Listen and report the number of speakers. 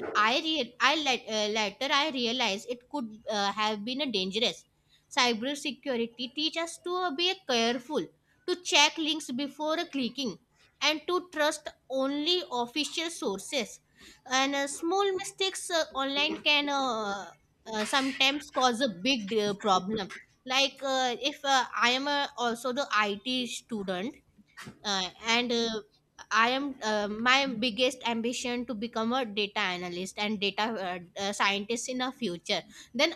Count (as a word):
one